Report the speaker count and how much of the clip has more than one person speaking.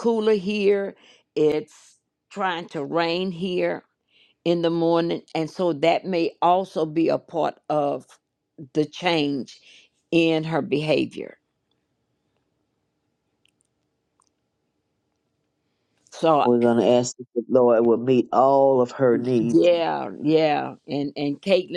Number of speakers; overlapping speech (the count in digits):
2, about 1%